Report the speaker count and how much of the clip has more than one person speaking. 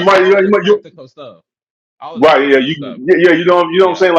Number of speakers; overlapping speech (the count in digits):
2, about 45%